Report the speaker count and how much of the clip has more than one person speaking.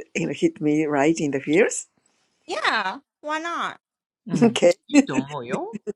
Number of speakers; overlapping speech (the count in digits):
3, about 3%